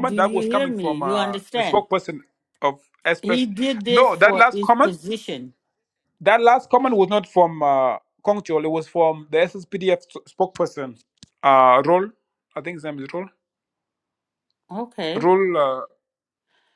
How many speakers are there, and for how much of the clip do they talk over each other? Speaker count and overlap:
two, about 18%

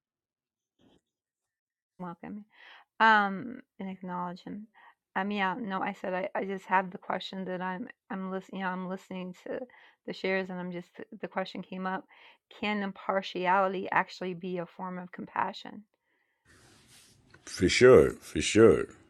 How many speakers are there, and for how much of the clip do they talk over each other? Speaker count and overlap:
two, no overlap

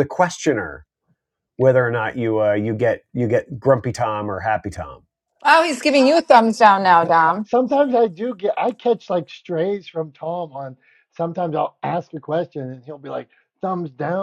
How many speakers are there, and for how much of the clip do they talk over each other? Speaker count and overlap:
three, no overlap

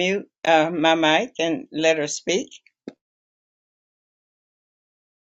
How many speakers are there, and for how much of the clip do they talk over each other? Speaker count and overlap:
one, no overlap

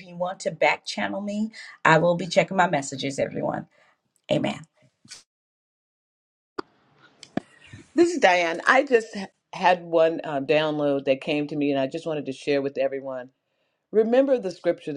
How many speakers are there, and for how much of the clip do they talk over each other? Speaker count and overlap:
two, no overlap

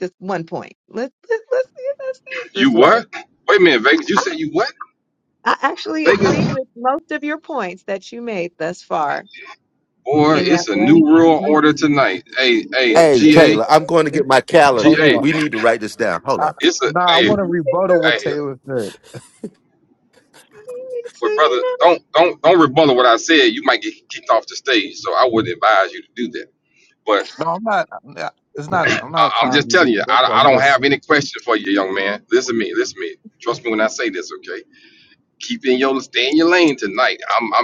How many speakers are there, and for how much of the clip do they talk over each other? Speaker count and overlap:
four, about 20%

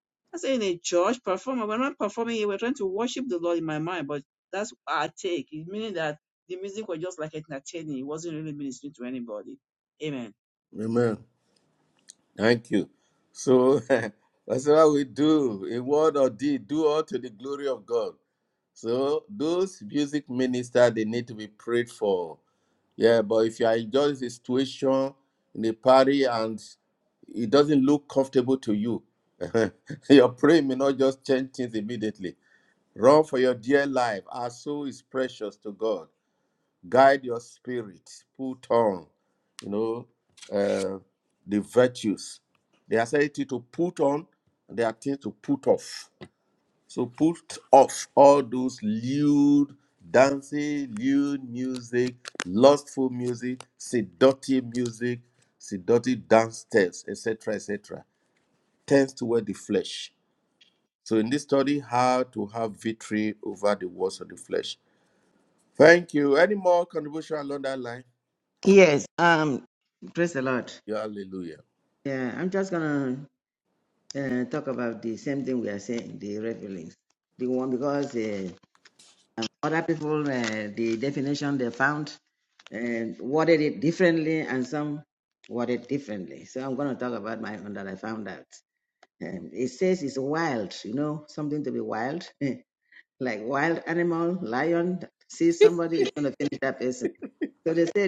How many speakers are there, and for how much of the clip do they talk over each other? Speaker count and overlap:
three, no overlap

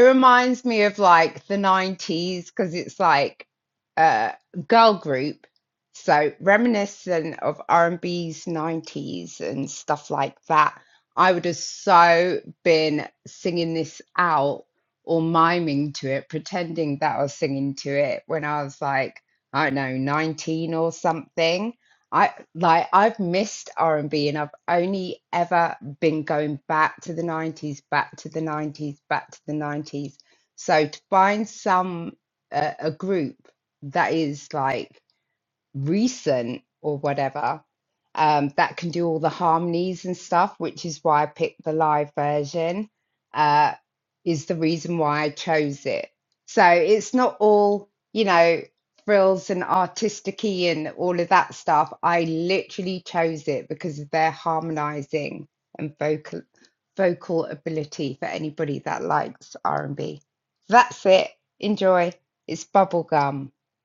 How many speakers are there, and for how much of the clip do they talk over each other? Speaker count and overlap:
one, no overlap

